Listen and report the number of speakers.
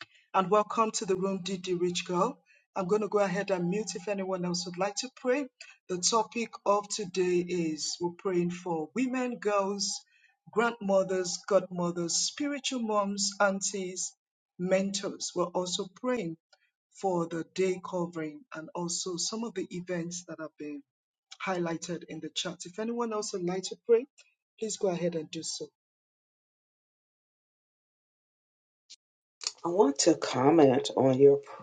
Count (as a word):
two